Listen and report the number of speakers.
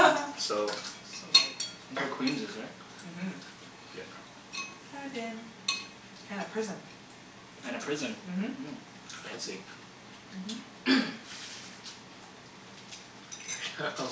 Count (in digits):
3